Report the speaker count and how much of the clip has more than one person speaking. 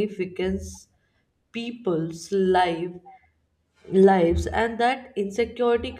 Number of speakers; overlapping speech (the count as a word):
one, no overlap